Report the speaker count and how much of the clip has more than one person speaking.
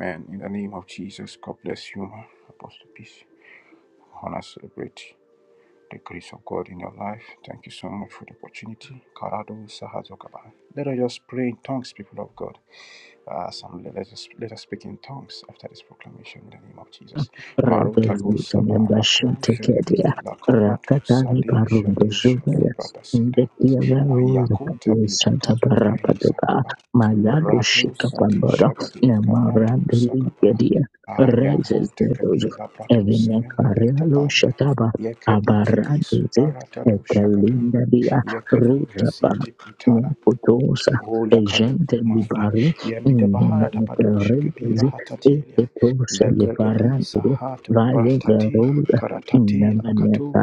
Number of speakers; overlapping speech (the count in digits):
2, about 46%